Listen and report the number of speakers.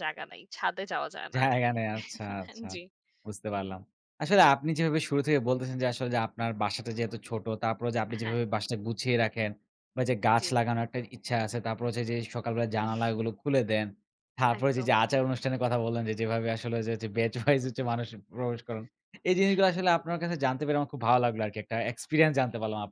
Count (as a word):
two